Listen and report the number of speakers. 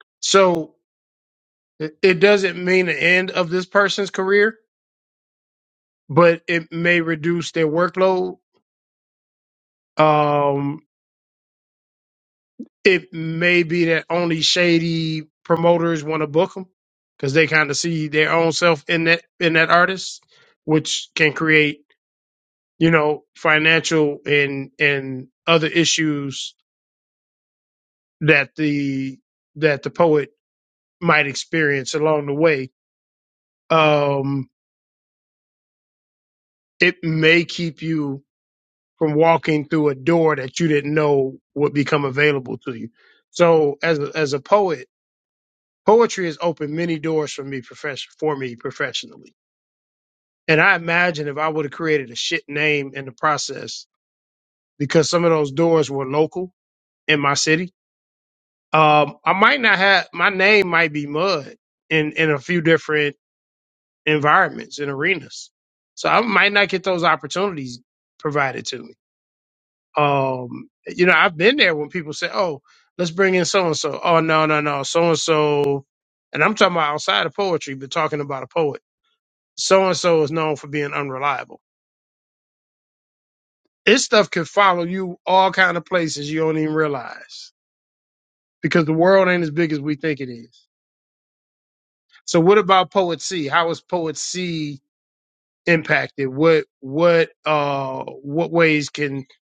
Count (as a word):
one